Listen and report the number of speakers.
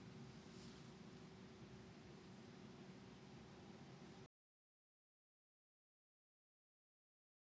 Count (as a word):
zero